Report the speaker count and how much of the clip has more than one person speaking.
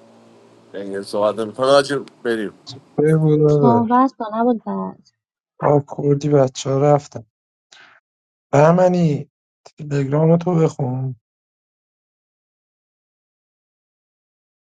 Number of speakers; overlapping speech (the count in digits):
3, about 2%